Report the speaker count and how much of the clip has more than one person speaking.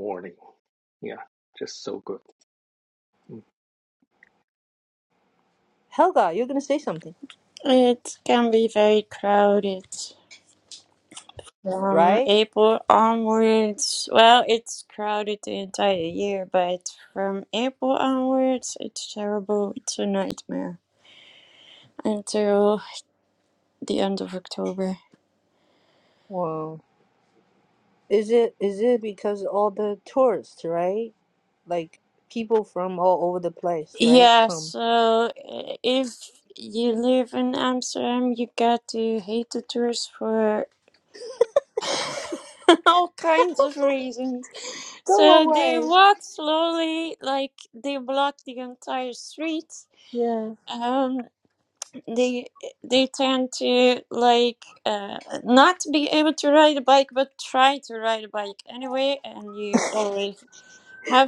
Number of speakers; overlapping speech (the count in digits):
3, about 3%